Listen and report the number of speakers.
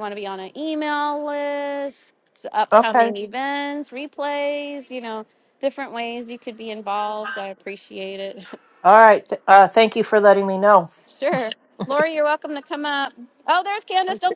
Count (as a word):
two